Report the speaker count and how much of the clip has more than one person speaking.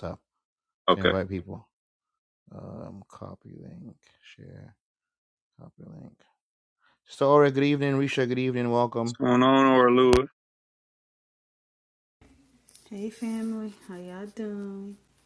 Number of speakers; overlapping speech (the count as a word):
three, about 2%